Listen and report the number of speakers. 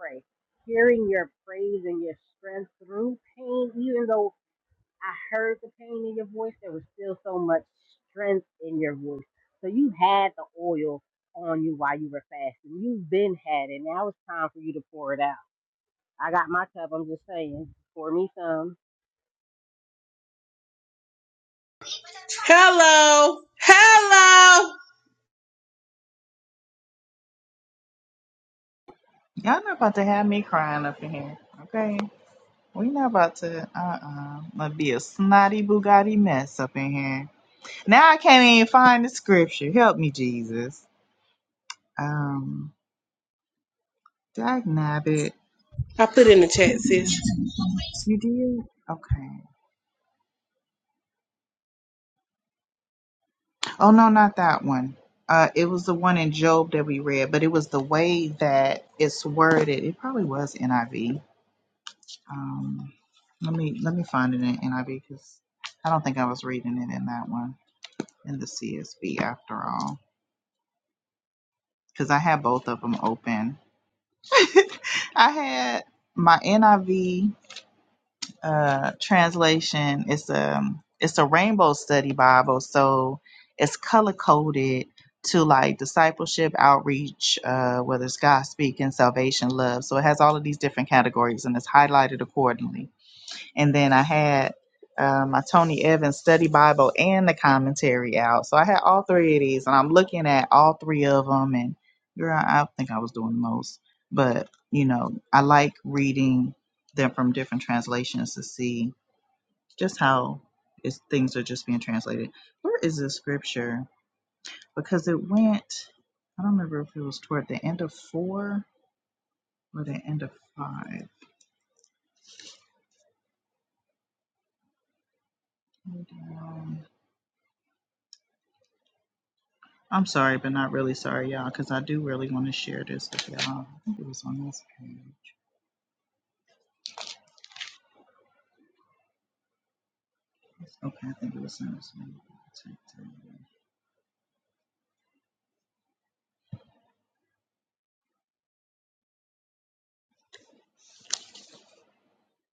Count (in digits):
3